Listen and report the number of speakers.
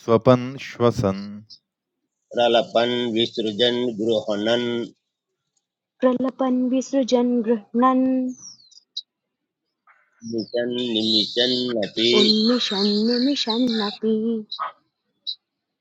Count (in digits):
3